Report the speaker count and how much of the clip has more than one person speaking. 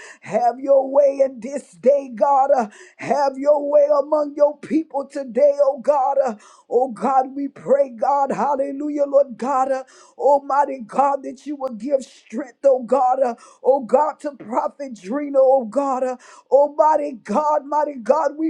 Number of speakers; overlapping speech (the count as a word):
one, no overlap